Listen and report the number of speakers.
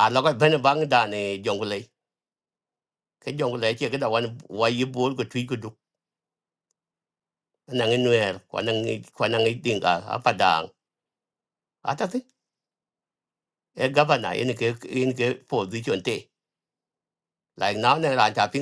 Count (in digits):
1